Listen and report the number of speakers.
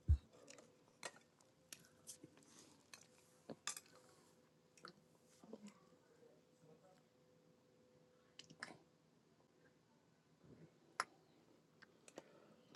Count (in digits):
0